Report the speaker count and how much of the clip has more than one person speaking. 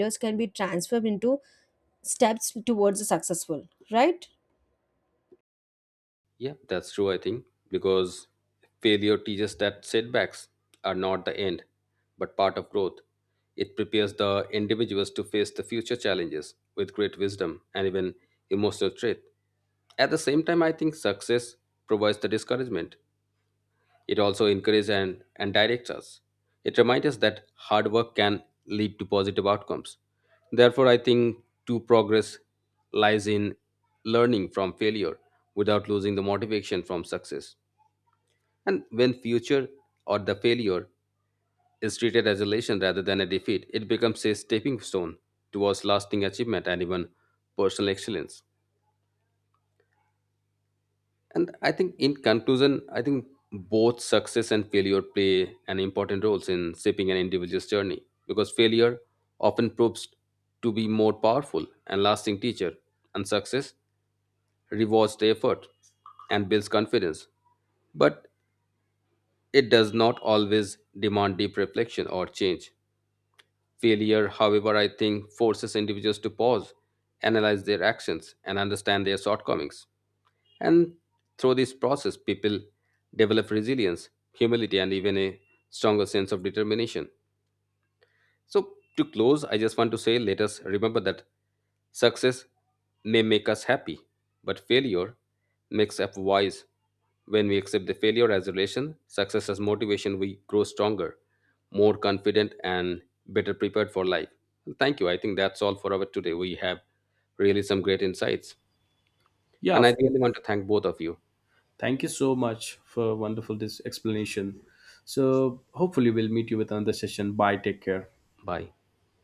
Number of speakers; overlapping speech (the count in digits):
3, under 1%